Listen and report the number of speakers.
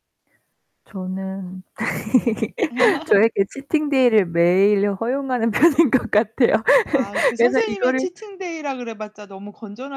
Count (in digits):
2